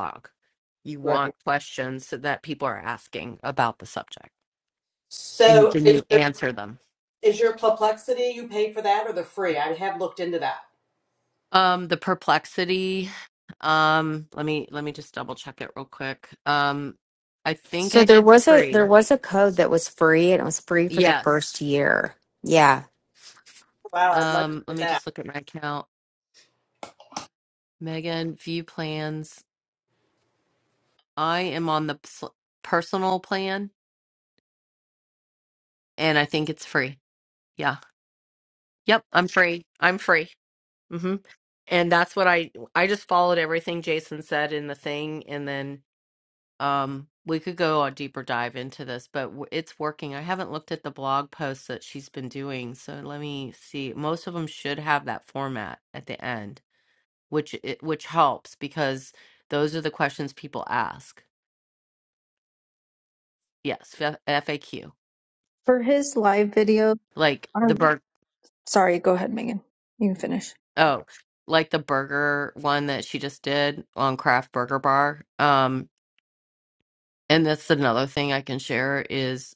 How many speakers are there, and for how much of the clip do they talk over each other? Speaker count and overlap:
four, about 4%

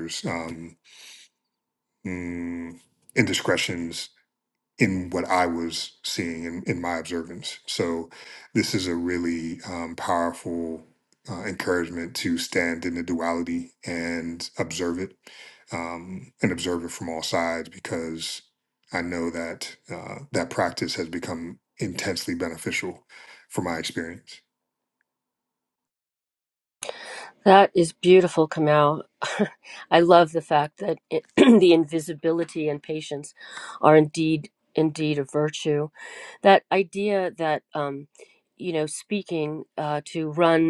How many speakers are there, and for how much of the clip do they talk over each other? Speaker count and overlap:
two, no overlap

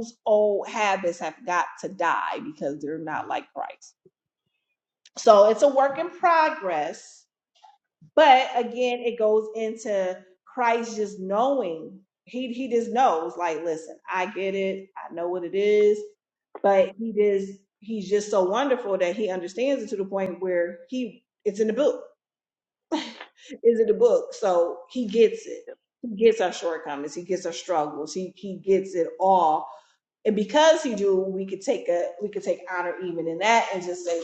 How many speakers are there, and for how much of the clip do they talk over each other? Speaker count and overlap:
one, no overlap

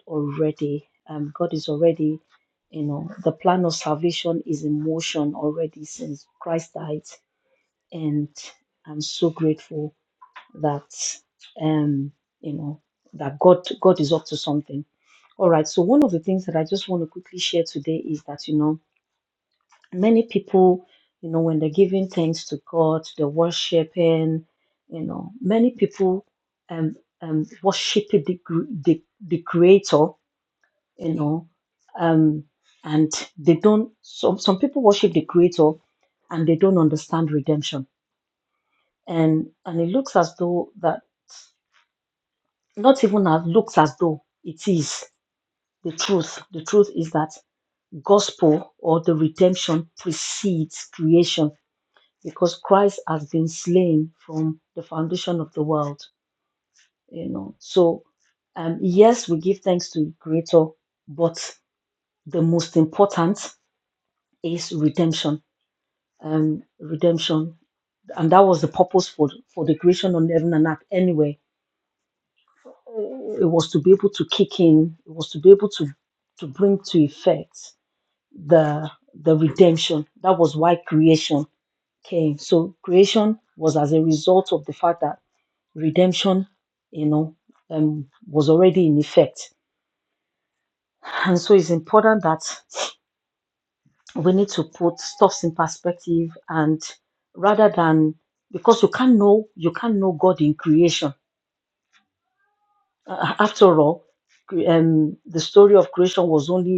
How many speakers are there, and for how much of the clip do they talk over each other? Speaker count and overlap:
one, no overlap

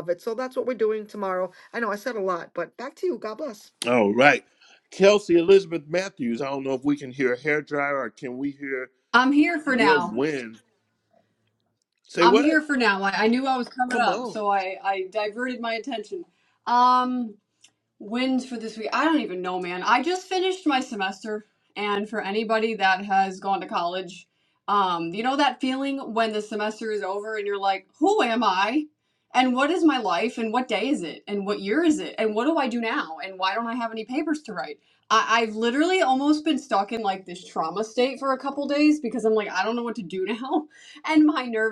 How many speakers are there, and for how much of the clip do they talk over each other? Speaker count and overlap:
three, about 3%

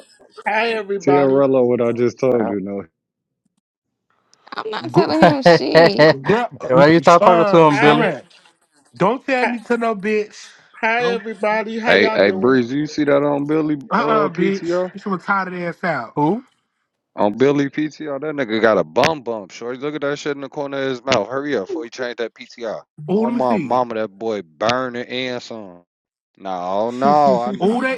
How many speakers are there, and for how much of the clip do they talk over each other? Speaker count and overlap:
five, about 17%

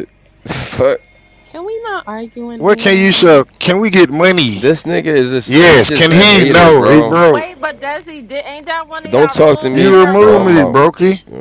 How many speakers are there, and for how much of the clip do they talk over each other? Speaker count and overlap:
four, about 40%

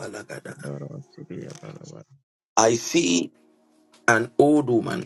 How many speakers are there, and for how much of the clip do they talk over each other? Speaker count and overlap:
two, no overlap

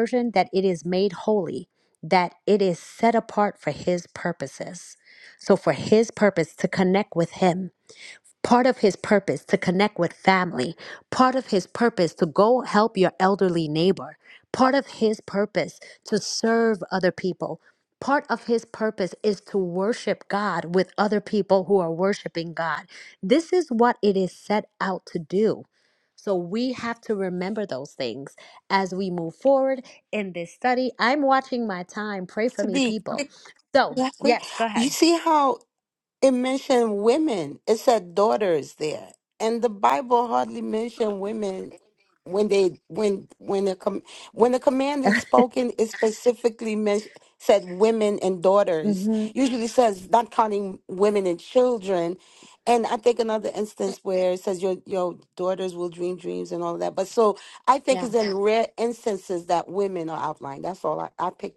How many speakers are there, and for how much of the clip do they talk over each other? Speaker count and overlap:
two, about 2%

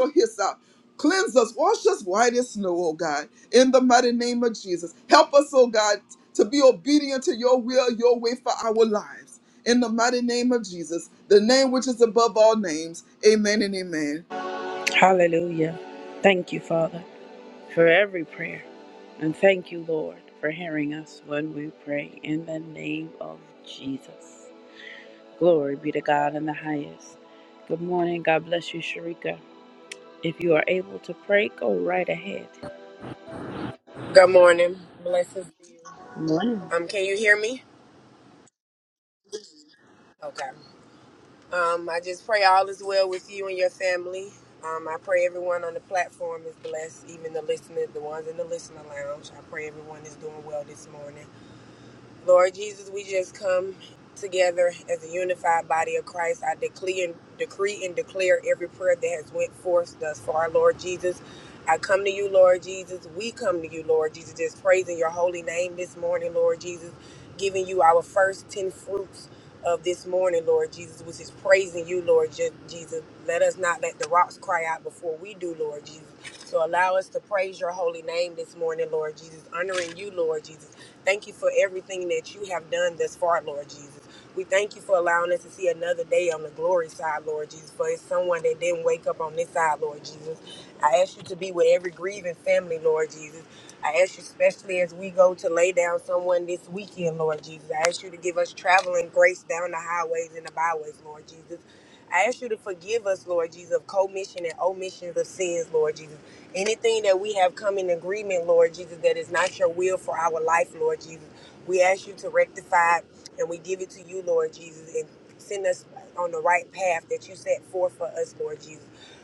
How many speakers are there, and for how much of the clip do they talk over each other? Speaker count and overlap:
three, no overlap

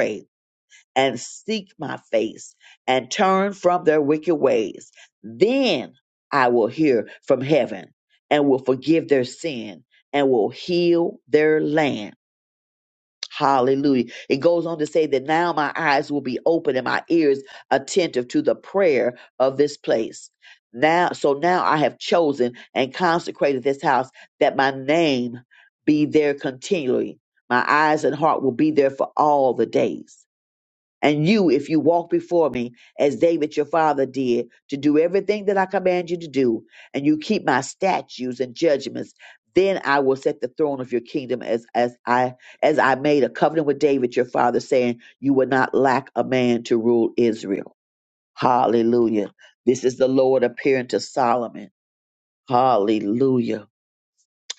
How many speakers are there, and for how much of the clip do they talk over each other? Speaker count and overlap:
one, no overlap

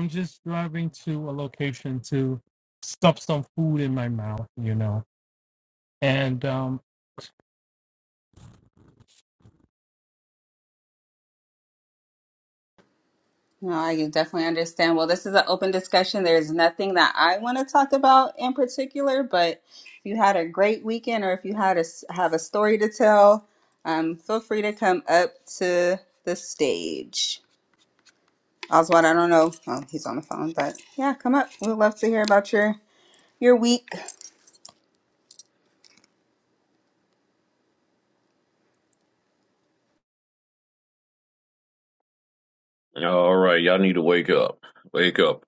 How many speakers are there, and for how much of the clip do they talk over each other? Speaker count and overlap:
three, no overlap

